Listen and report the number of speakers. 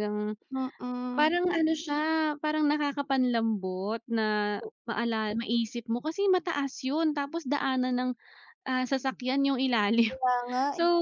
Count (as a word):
two